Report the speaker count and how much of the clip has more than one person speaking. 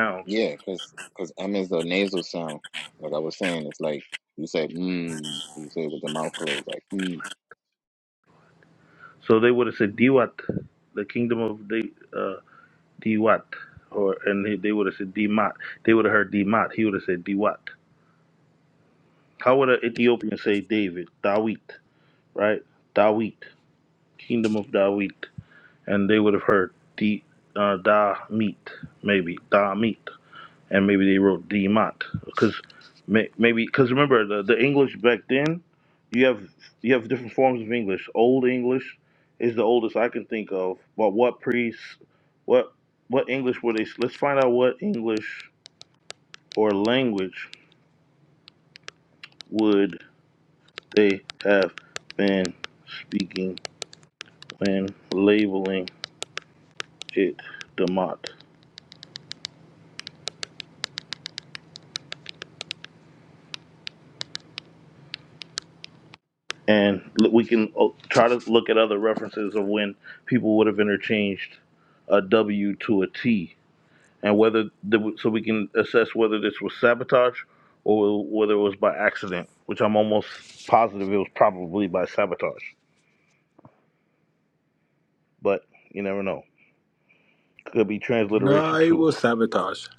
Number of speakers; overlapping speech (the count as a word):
three, about 1%